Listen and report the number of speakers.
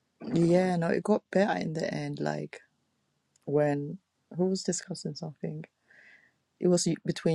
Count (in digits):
1